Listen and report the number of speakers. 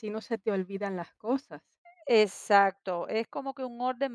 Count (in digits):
2